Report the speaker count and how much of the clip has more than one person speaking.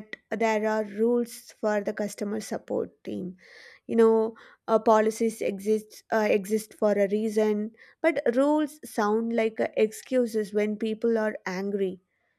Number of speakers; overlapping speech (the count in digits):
1, no overlap